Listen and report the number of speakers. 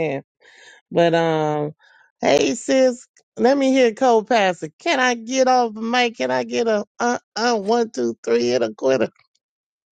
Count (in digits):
1